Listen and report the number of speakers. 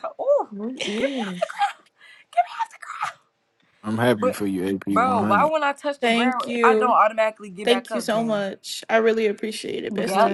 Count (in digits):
4